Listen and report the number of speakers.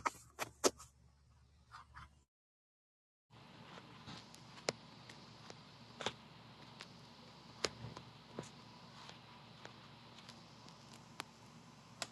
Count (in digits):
0